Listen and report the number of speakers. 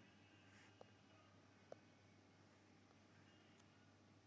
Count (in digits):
0